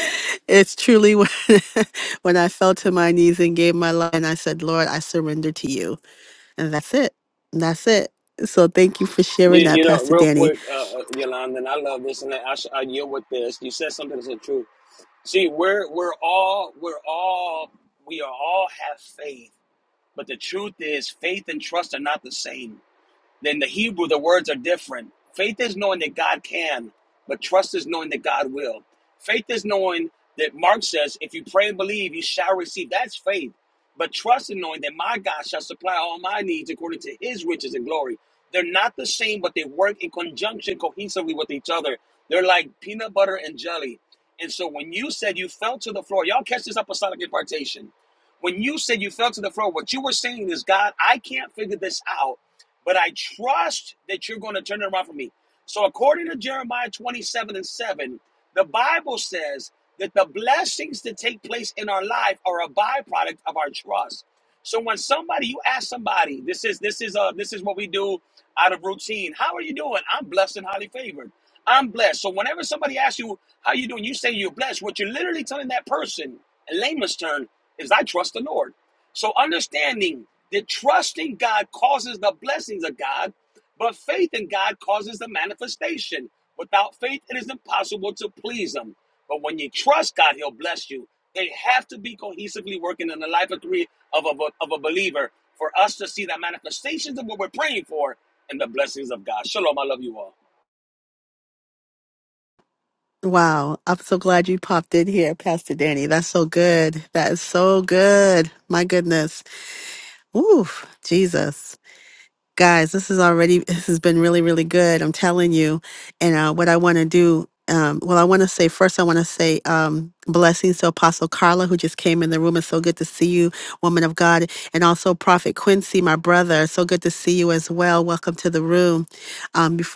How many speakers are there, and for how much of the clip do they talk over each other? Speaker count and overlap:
2, about 1%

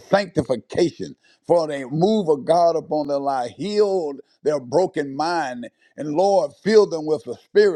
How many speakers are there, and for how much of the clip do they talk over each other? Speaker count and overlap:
1, no overlap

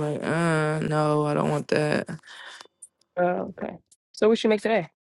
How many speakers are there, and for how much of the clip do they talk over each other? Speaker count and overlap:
2, no overlap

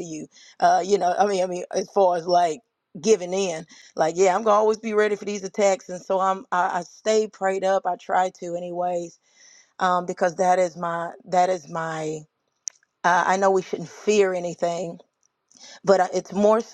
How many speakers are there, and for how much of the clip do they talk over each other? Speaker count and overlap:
1, no overlap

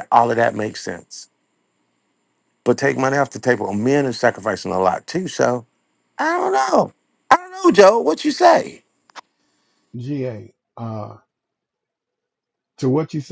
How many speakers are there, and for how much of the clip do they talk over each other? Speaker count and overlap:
2, no overlap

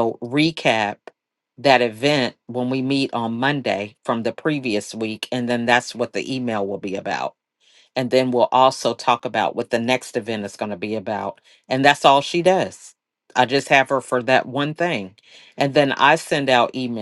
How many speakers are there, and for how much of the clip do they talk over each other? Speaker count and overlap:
1, no overlap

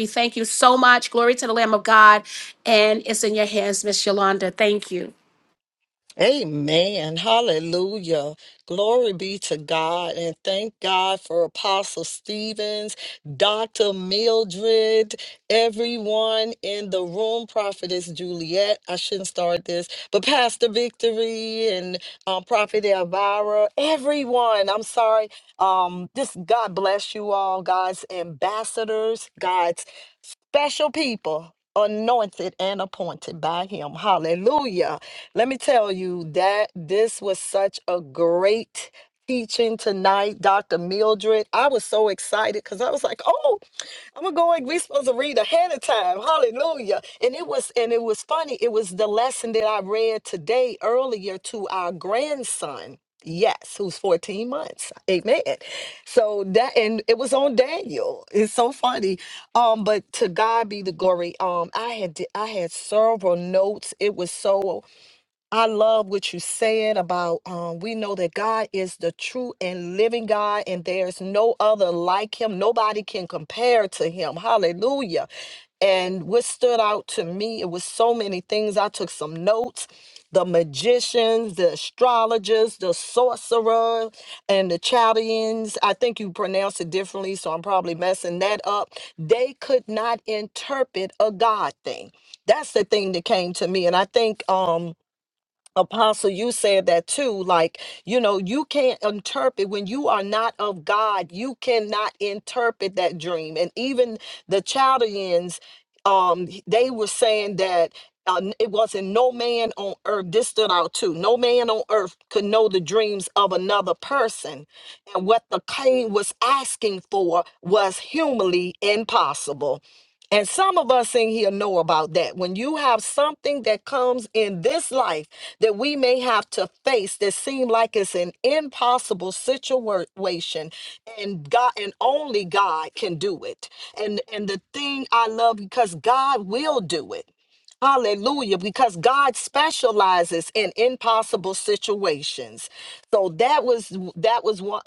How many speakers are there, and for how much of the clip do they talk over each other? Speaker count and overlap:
2, no overlap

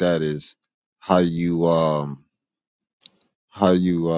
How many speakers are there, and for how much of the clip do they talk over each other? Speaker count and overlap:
1, no overlap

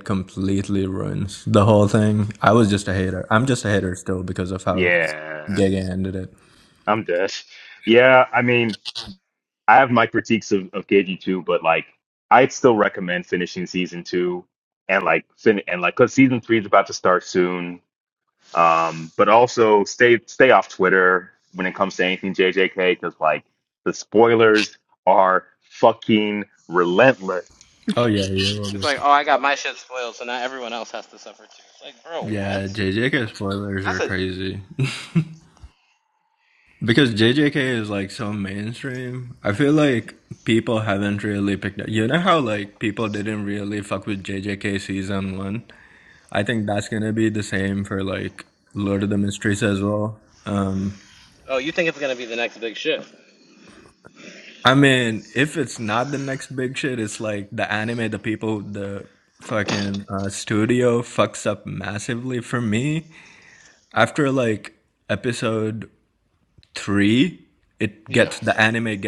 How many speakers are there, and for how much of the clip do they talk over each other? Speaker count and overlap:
3, about 2%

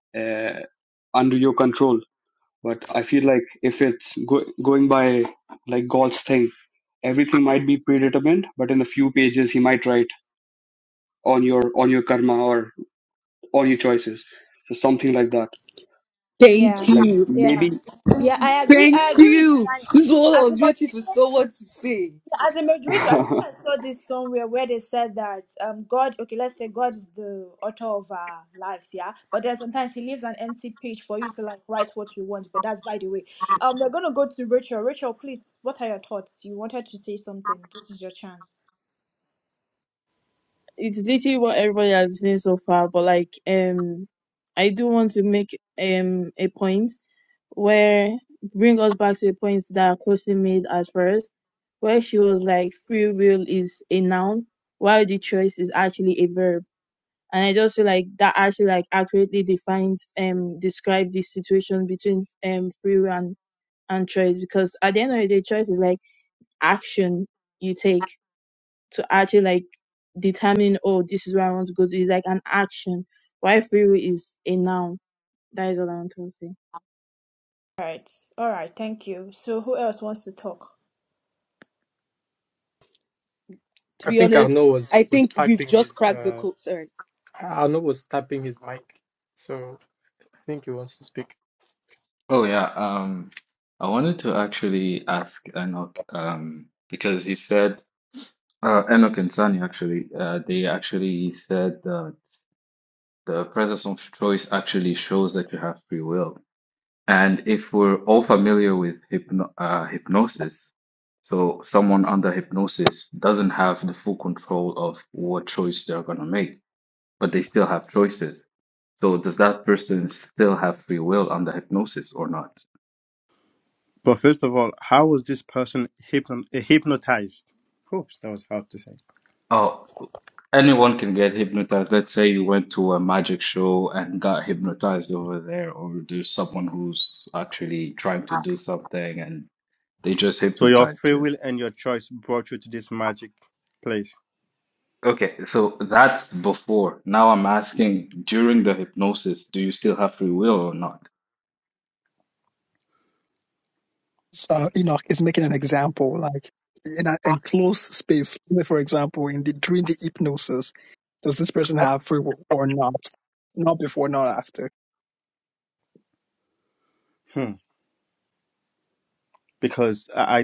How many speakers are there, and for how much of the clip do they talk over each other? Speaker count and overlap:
8, about 4%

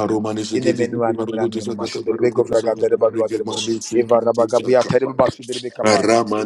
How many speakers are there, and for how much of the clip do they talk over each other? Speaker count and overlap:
2, about 76%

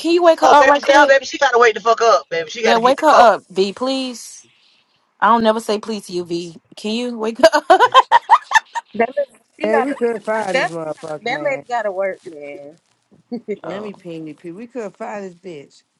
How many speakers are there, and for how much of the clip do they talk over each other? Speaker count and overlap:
4, about 16%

